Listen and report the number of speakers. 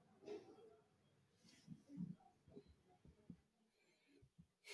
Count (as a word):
zero